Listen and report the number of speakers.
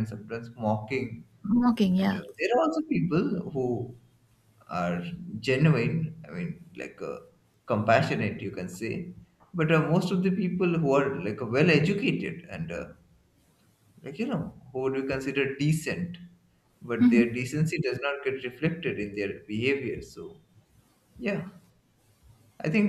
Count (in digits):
2